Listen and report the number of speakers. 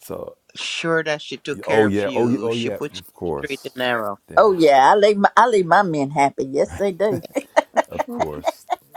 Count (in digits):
3